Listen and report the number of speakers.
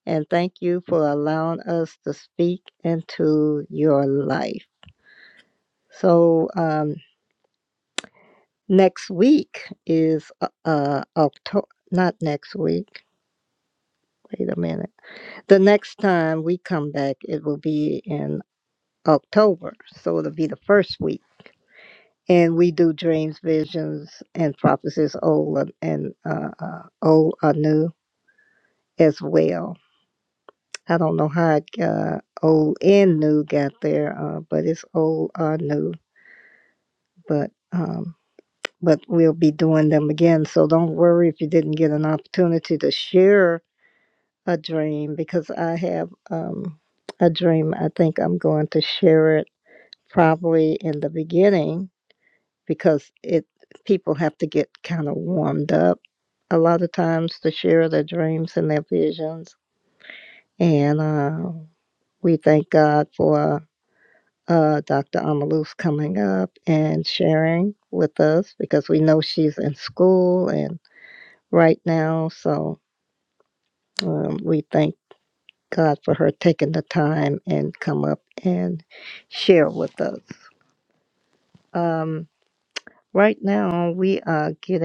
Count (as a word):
one